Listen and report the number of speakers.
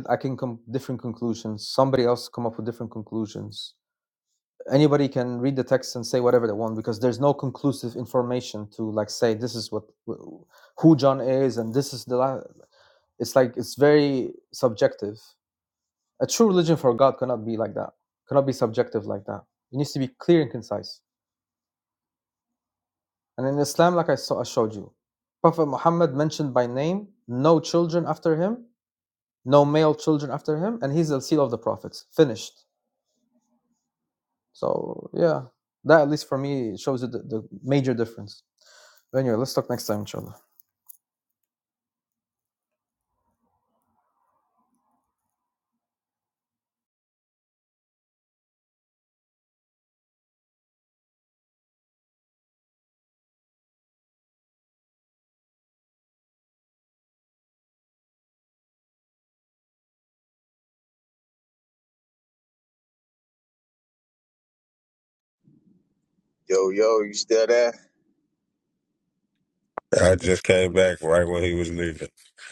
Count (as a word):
three